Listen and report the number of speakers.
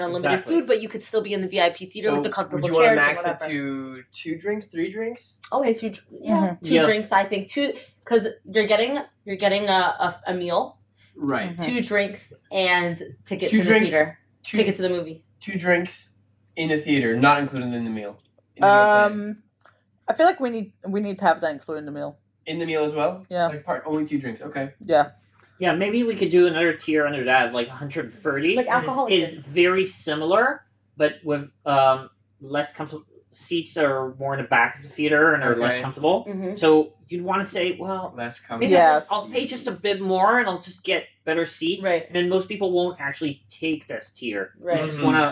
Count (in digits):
4